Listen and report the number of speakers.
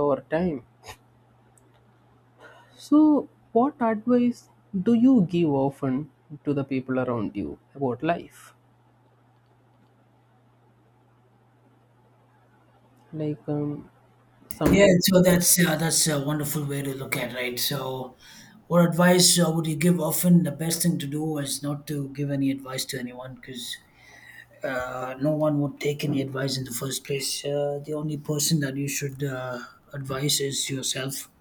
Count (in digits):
2